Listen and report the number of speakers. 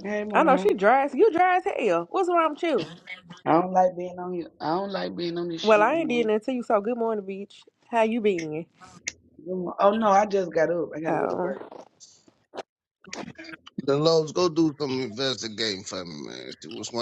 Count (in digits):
3